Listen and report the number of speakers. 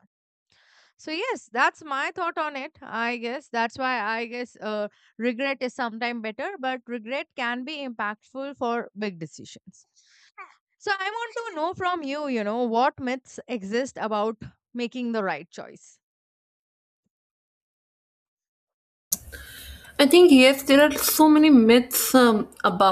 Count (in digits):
2